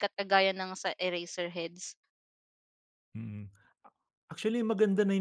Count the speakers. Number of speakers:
two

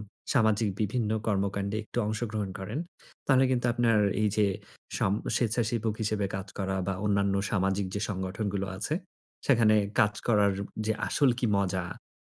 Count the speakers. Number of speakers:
one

